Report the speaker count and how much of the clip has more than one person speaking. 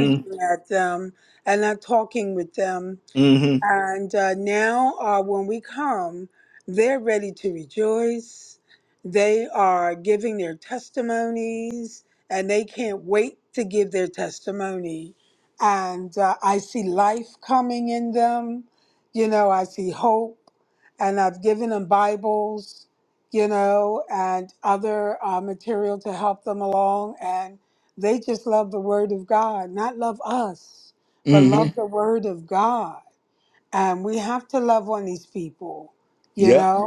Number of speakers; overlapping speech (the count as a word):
two, about 2%